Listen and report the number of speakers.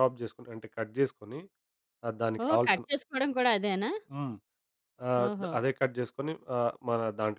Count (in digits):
2